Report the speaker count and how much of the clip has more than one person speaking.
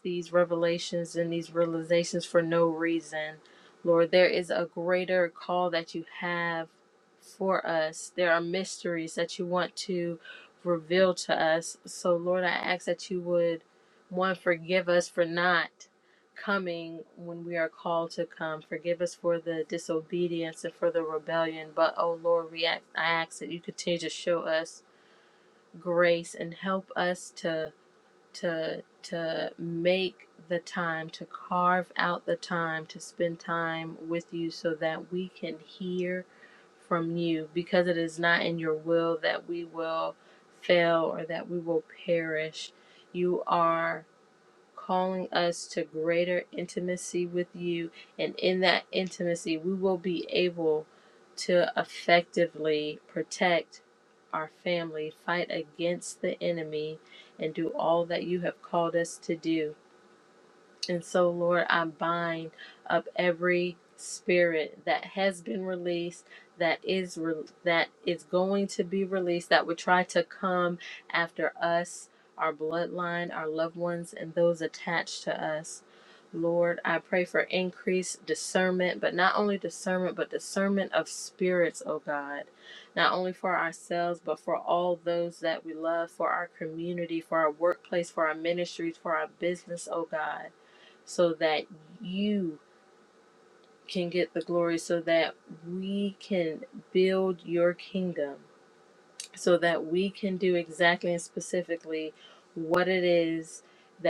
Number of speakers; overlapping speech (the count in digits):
1, no overlap